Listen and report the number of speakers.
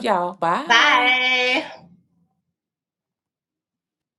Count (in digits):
2